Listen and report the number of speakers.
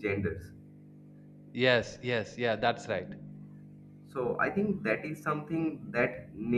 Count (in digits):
2